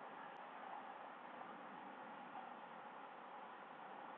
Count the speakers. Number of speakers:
0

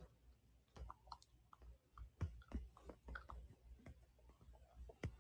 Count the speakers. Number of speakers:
0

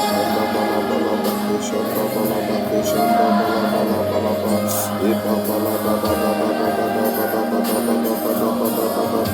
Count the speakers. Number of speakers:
0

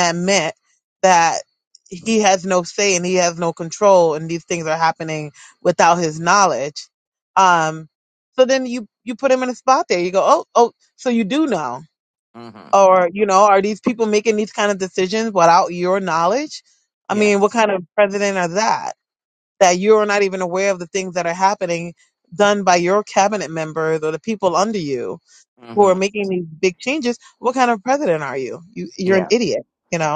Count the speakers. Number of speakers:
2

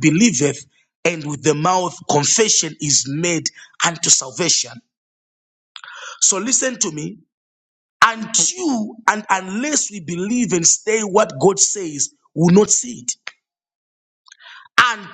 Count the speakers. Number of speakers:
1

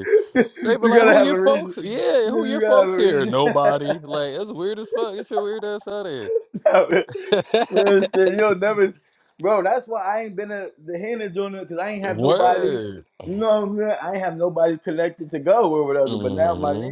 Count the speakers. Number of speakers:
2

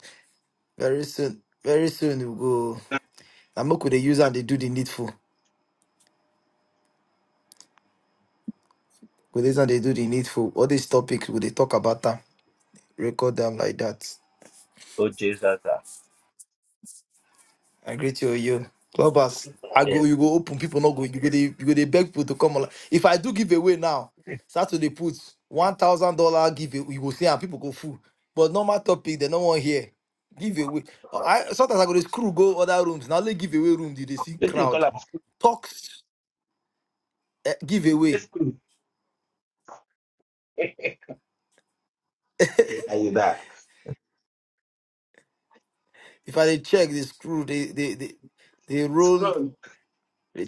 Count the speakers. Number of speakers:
2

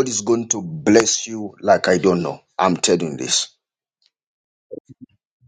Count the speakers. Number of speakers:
1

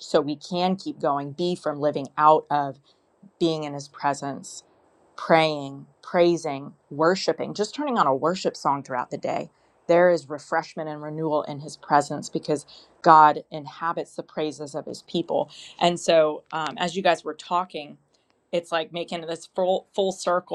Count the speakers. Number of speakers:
1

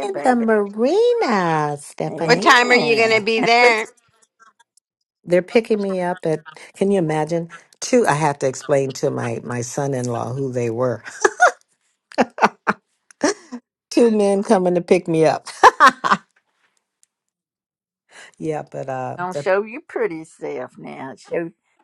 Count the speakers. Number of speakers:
3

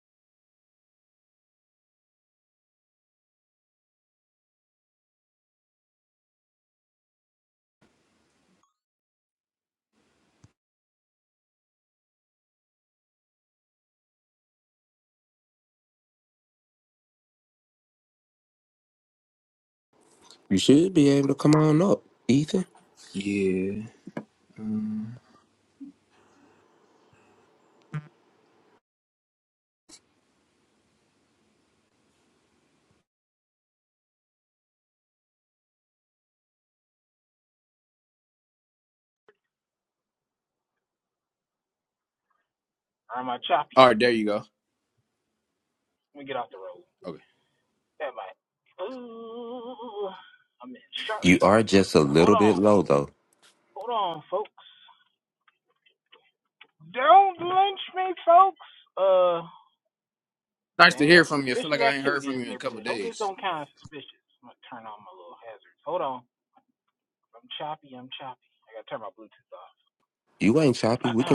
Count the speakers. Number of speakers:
3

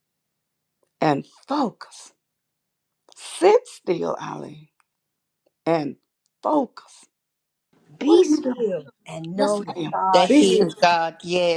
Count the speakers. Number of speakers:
3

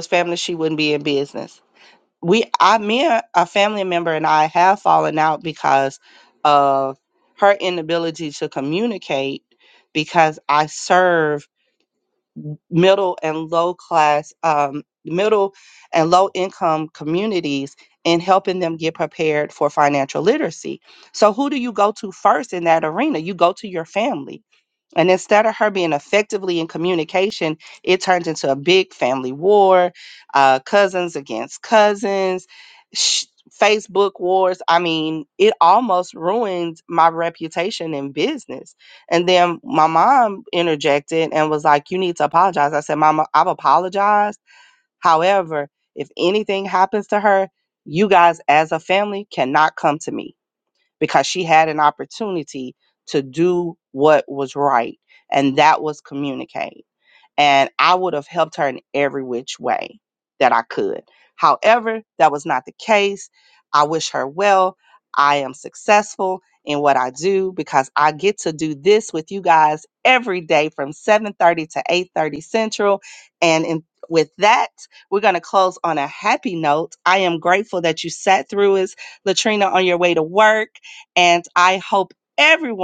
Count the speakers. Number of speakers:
1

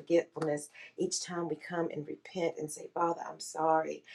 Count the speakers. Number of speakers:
1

